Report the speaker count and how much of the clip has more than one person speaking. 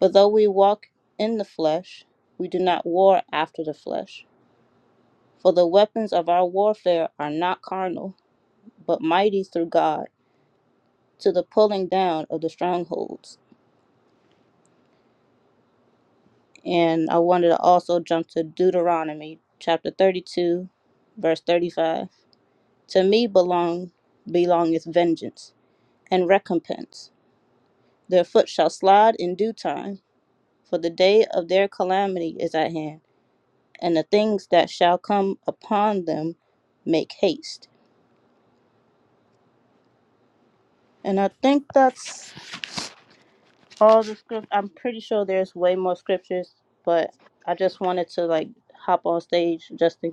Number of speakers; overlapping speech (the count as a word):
one, no overlap